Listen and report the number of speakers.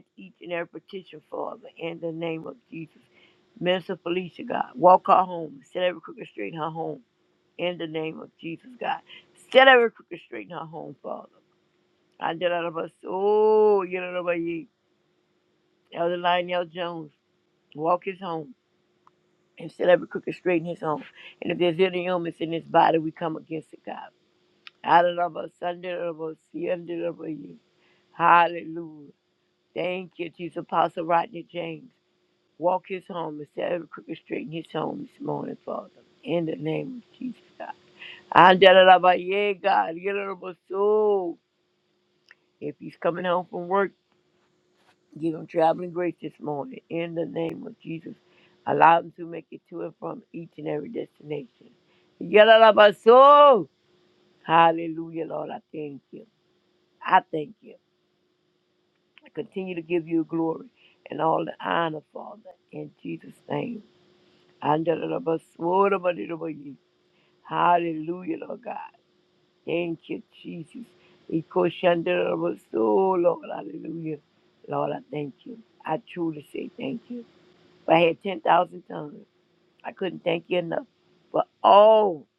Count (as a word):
one